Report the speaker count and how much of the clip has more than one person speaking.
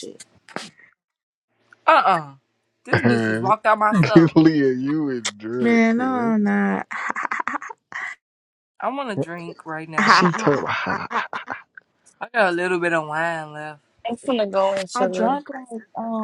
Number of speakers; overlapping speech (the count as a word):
four, about 15%